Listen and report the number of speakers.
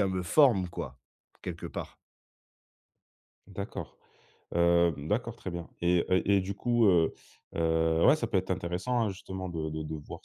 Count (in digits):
2